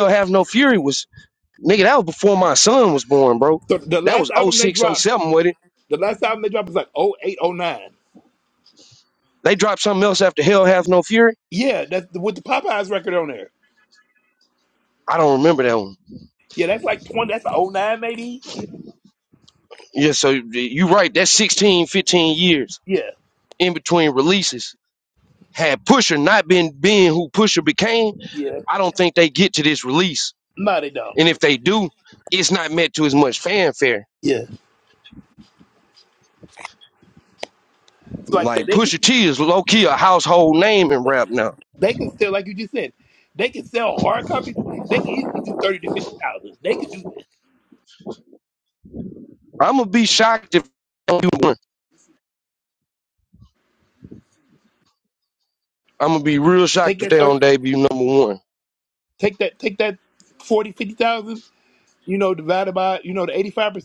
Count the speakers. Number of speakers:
2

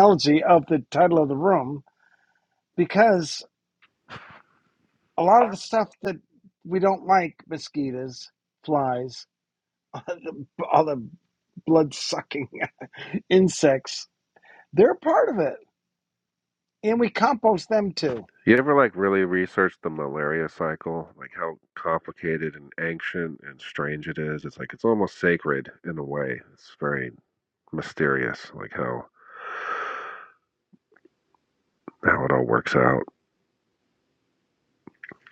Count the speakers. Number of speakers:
2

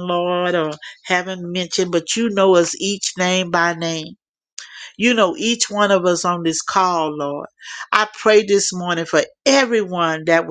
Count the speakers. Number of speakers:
1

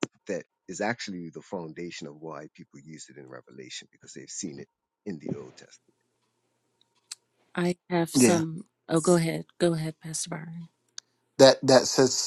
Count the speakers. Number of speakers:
3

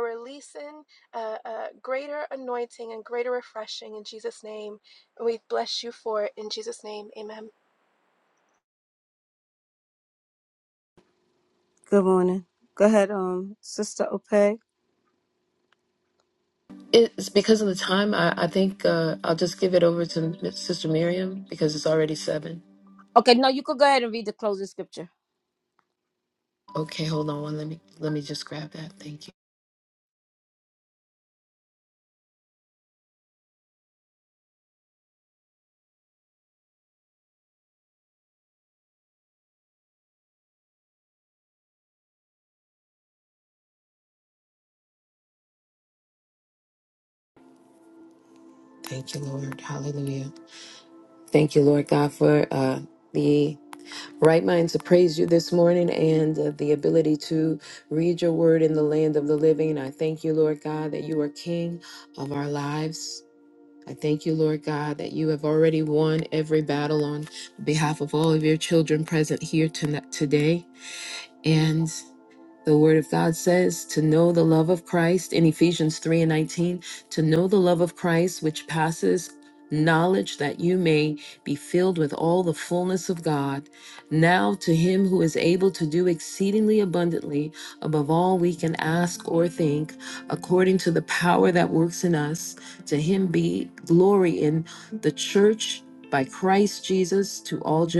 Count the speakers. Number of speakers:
3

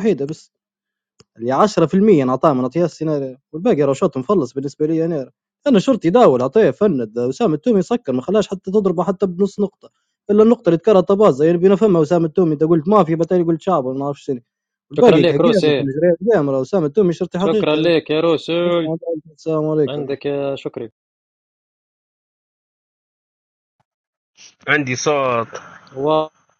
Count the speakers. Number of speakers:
3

